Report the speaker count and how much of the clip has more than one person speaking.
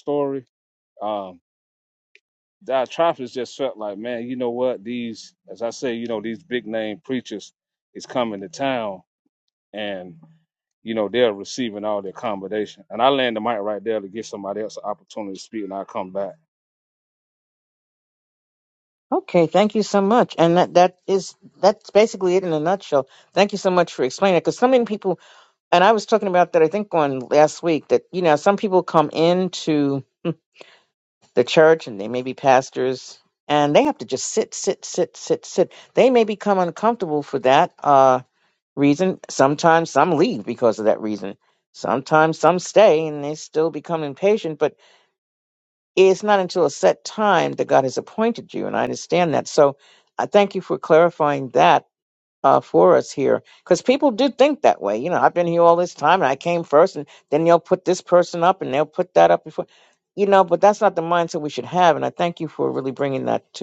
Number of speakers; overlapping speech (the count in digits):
2, no overlap